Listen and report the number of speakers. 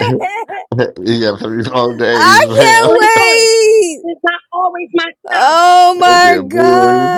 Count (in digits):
3